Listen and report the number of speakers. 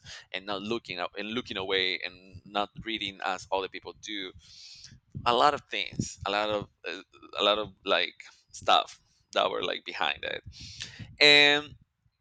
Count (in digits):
1